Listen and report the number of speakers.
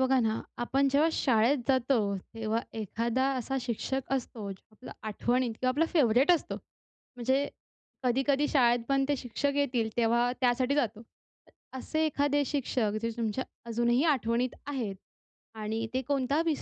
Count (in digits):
1